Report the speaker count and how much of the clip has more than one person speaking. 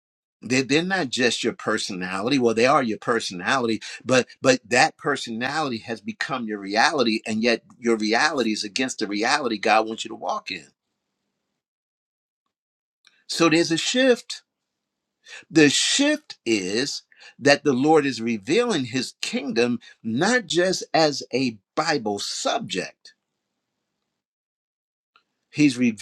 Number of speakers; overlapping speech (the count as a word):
one, no overlap